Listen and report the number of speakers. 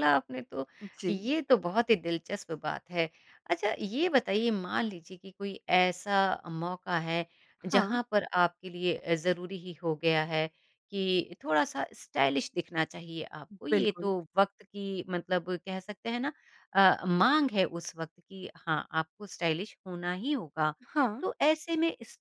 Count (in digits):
2